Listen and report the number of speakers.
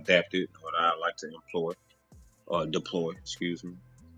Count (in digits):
1